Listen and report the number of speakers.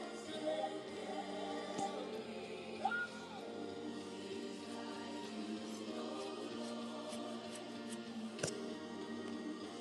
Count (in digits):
0